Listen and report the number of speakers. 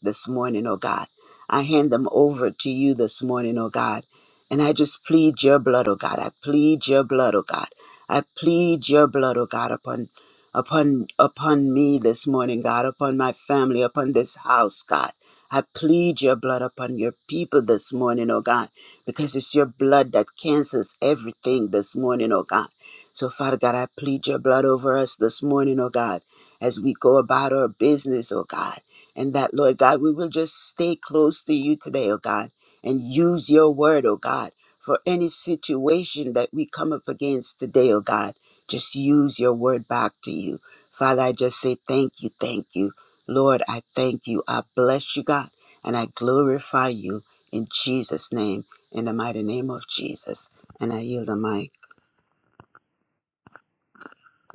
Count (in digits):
1